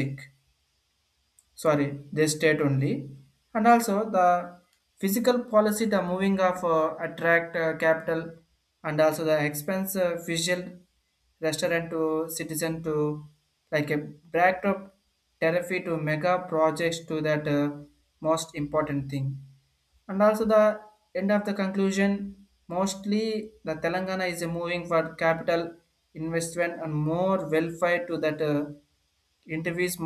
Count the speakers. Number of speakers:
one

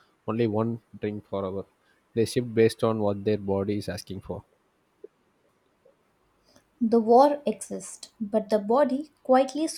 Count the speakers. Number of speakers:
two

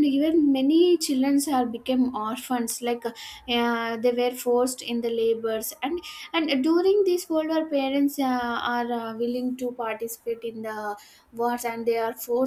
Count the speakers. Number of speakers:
one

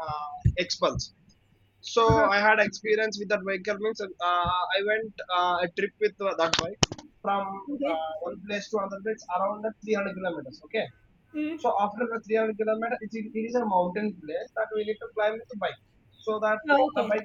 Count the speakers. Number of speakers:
two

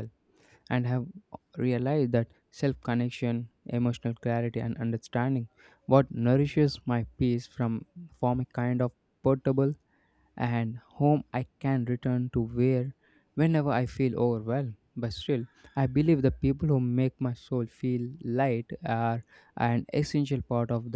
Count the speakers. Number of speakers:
one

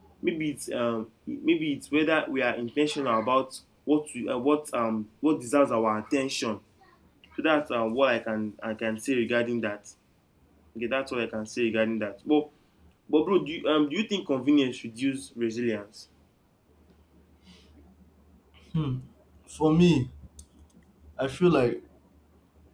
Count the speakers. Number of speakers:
two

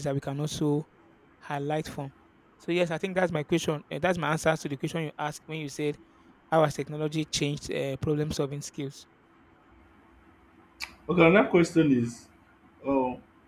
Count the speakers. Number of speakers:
two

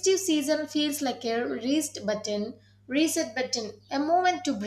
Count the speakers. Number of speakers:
one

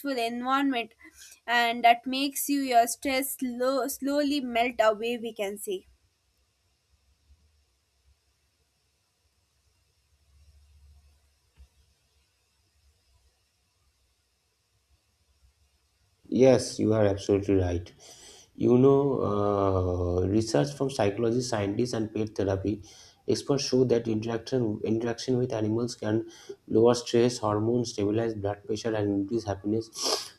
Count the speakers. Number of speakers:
two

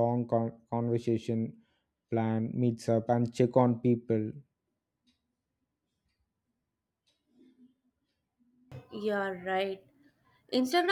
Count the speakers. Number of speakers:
two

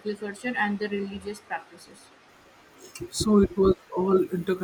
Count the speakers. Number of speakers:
two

